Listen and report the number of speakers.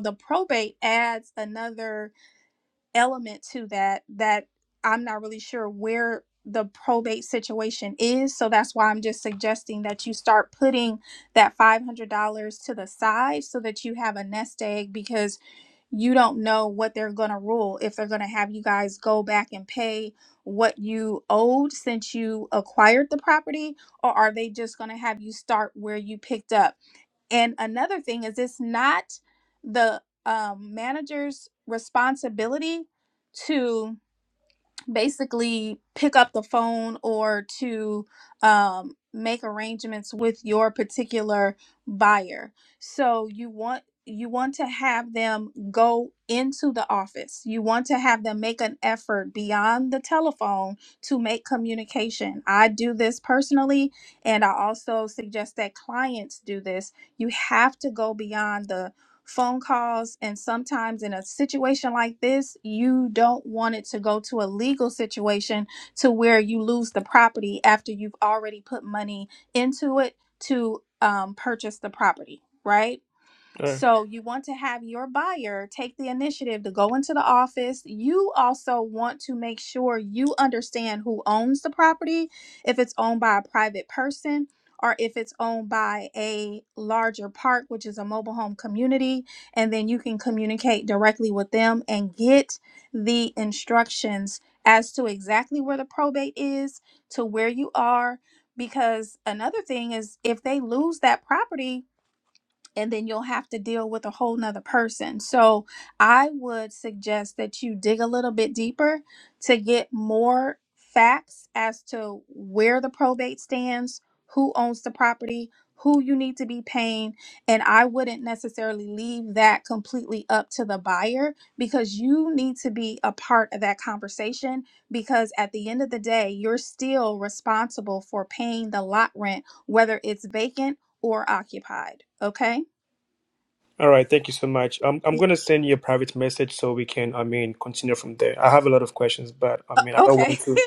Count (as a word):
two